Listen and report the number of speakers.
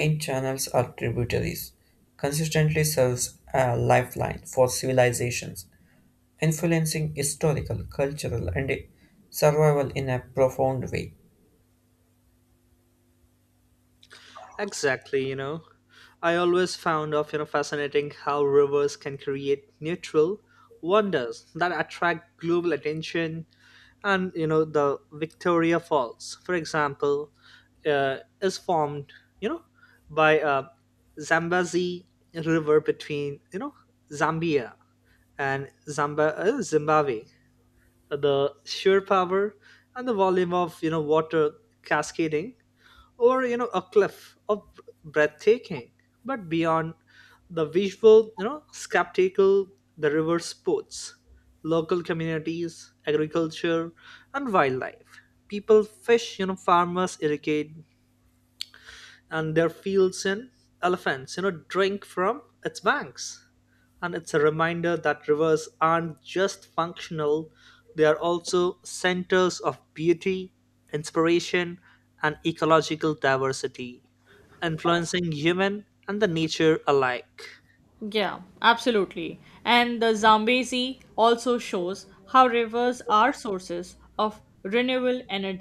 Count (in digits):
3